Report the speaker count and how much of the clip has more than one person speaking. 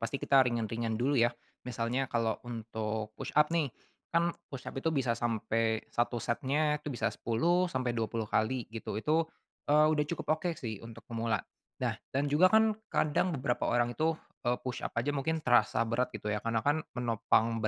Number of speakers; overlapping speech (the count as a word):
one, no overlap